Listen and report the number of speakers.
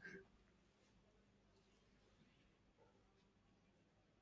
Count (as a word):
zero